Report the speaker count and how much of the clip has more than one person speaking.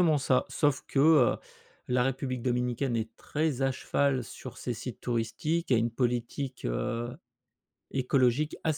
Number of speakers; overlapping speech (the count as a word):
one, no overlap